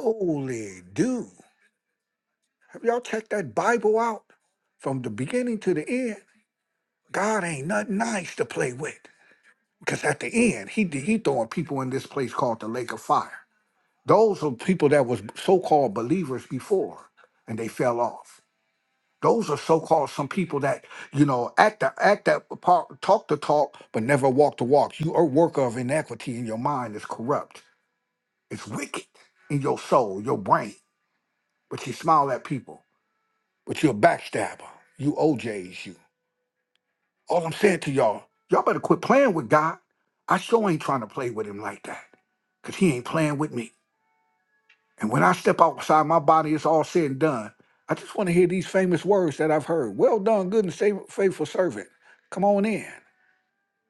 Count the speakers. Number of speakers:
one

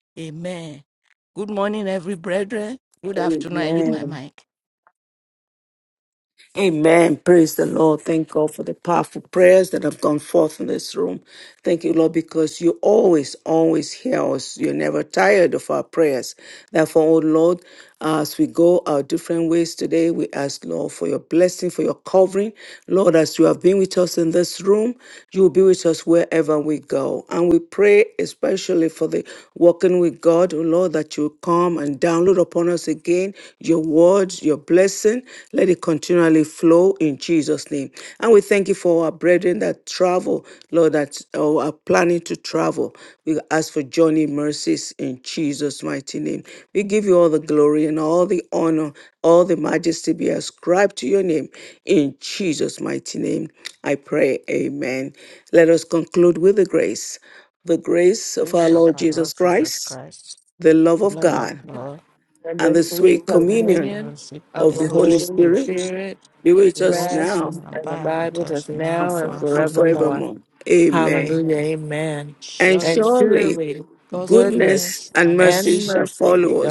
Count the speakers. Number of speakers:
three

